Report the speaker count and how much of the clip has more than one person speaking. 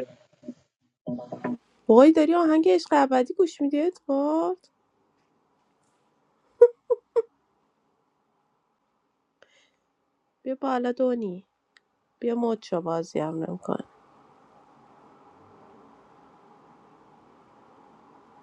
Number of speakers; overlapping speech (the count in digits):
1, no overlap